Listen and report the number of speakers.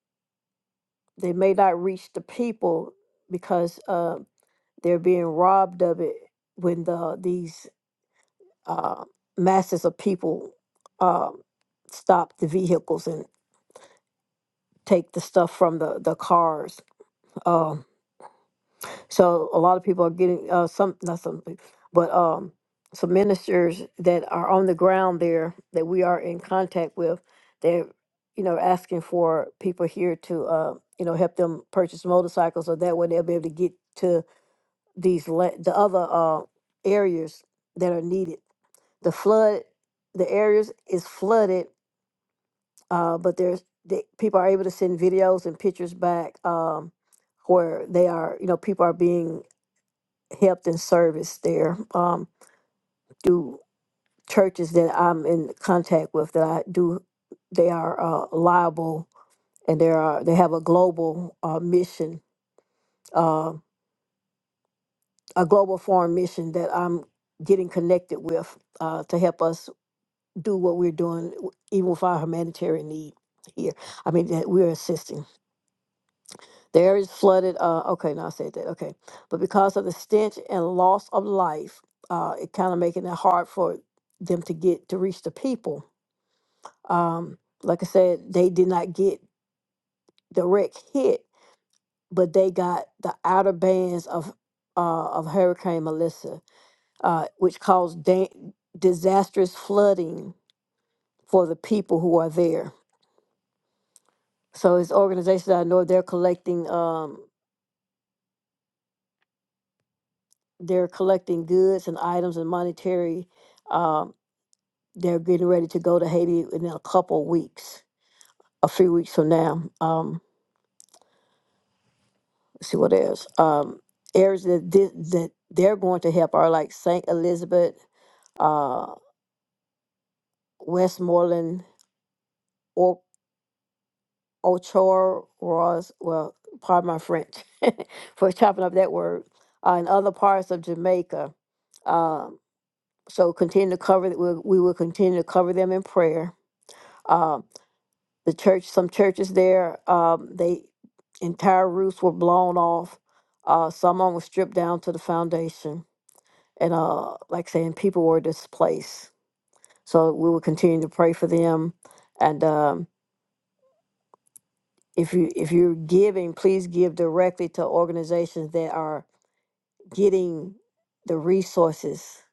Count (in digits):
1